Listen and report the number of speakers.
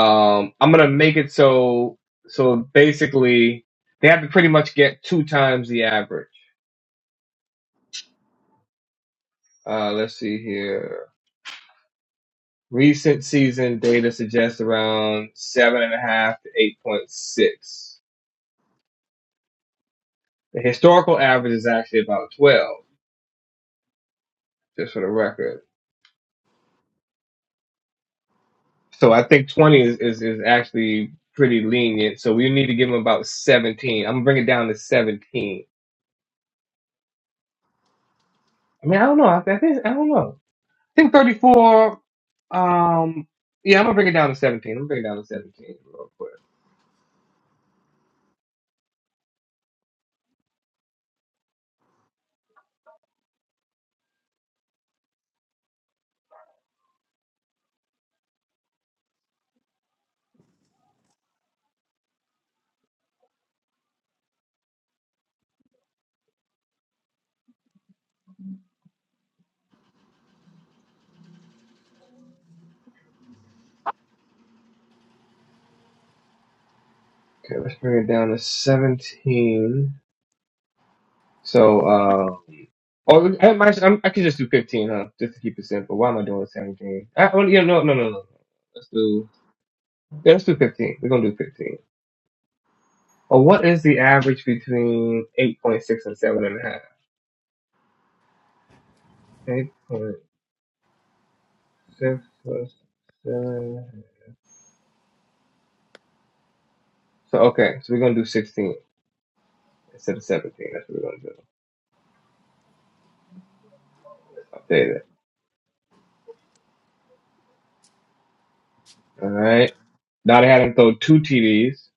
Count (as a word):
one